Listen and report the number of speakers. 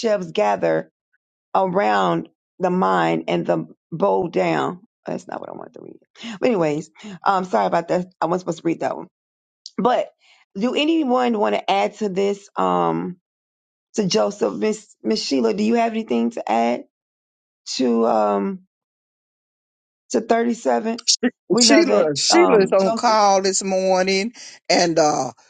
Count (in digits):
2